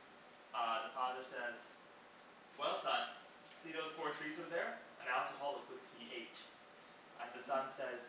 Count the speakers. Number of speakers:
one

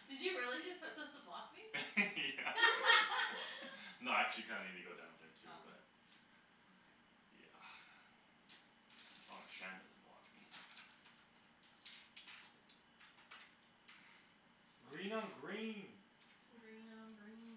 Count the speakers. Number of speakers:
four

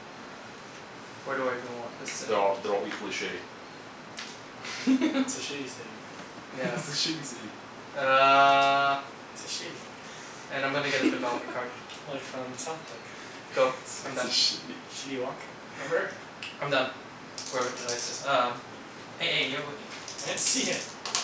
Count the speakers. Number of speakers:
three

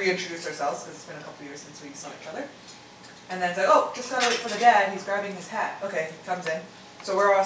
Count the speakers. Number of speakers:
one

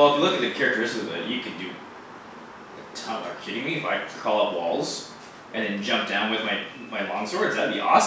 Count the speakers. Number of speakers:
one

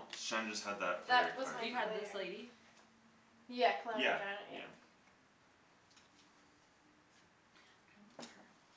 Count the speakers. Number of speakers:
three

